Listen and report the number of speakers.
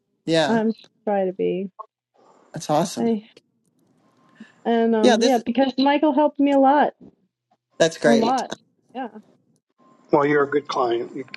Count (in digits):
3